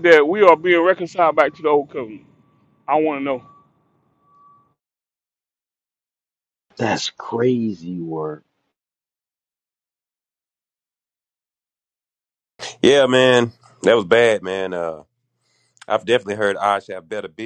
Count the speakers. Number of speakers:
three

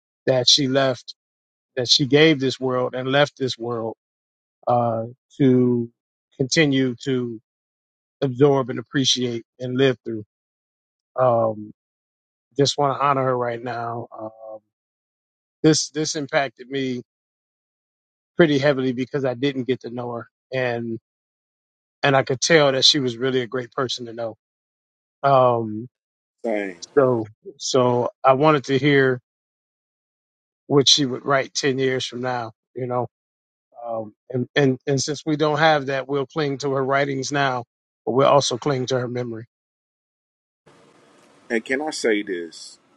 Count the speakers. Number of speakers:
two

